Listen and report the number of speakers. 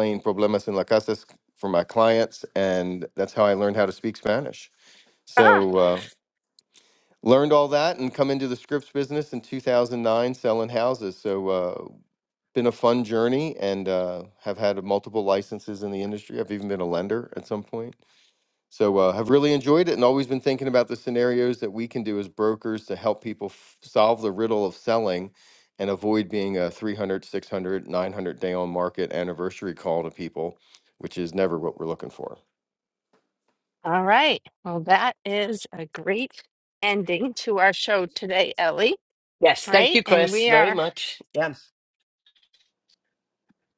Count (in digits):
3